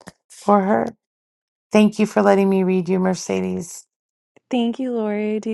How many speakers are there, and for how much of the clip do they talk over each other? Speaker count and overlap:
2, no overlap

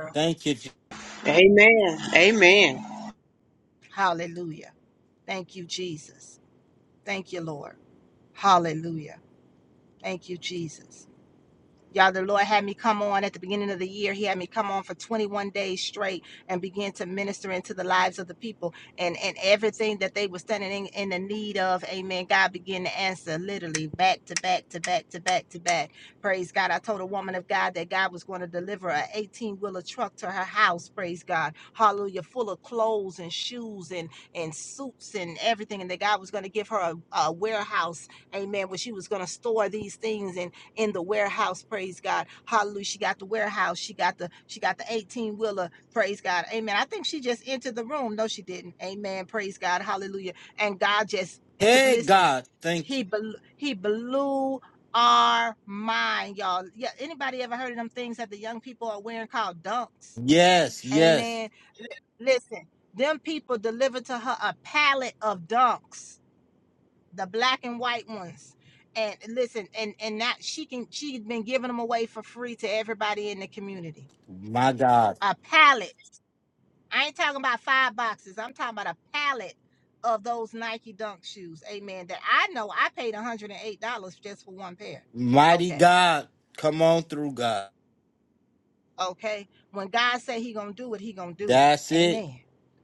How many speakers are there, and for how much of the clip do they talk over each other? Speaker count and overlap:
3, about 2%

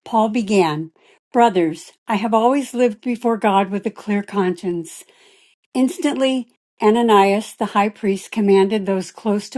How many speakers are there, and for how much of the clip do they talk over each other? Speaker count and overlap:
1, no overlap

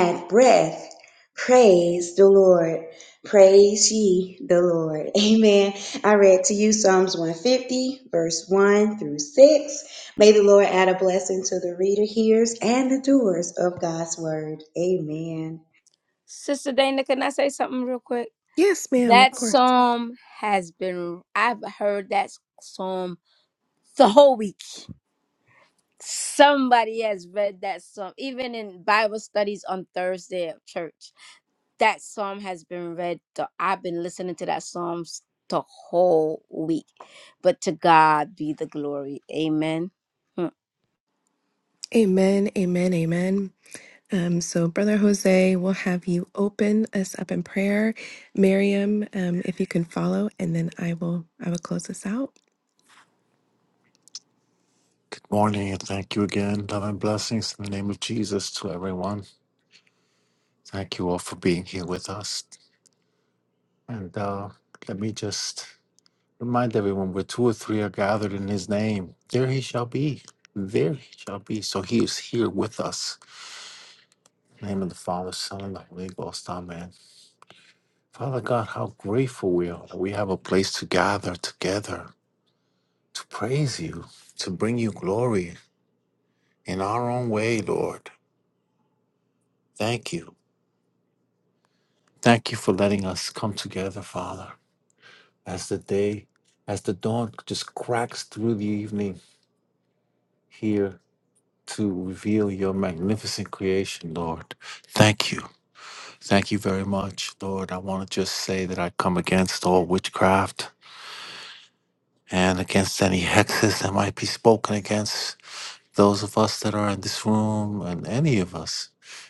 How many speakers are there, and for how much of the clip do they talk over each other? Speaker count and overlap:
4, under 1%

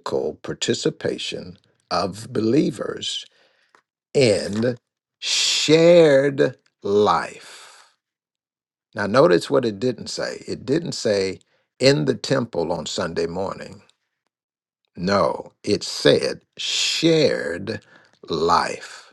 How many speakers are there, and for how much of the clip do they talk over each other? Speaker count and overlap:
1, no overlap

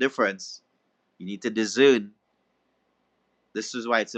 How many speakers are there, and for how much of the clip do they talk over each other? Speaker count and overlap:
1, no overlap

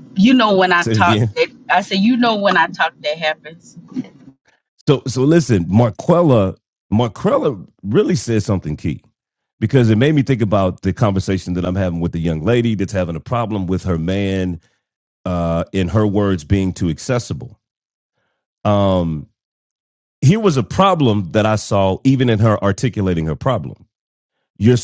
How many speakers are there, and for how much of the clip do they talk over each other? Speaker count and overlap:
2, about 2%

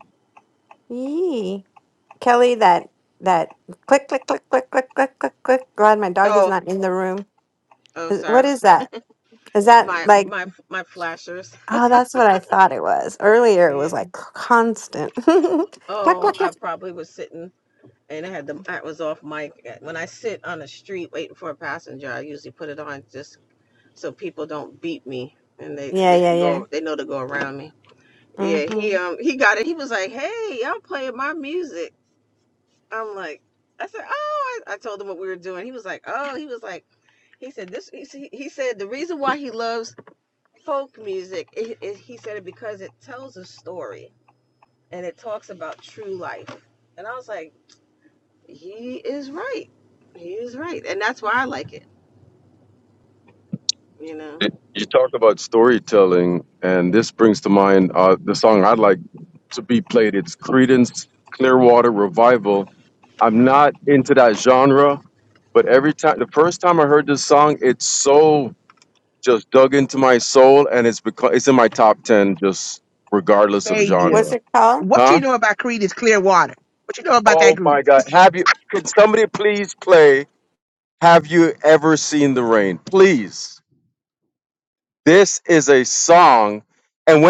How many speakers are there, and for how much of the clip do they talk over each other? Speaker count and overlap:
4, about 5%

